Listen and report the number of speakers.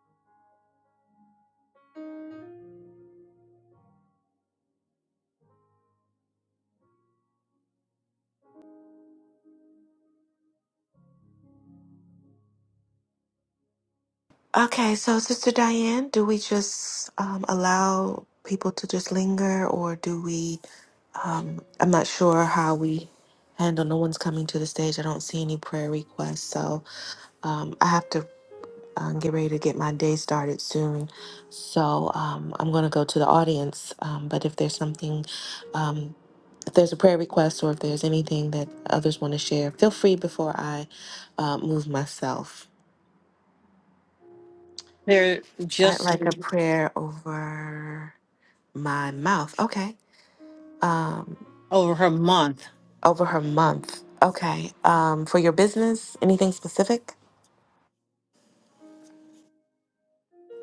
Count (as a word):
two